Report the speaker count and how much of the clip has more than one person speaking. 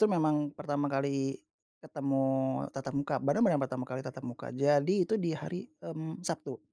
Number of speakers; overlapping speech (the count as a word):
one, no overlap